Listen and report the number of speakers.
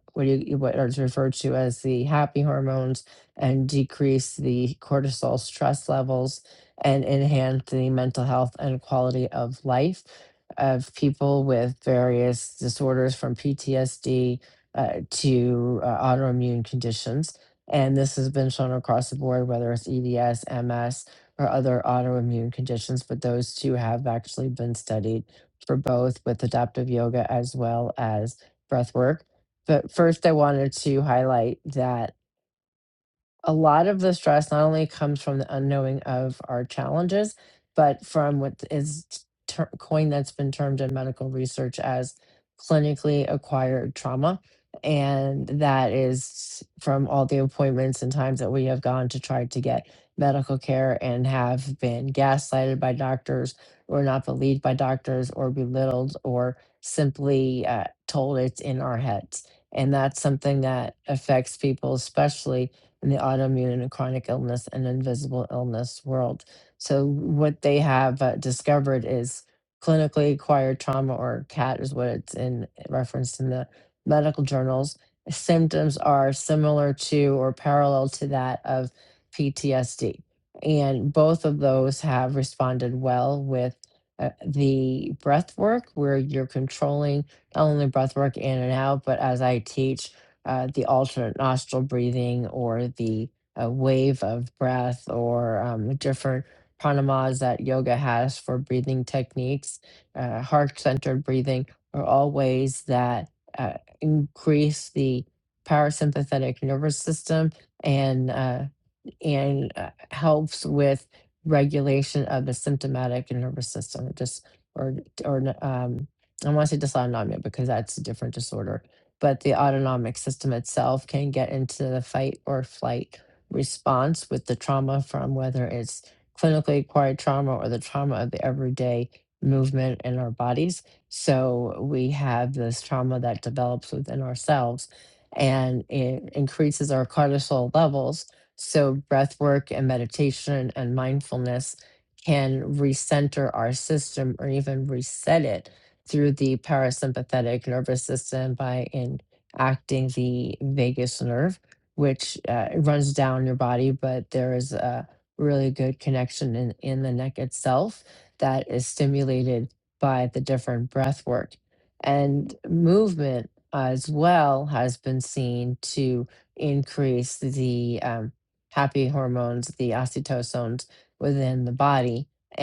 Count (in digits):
1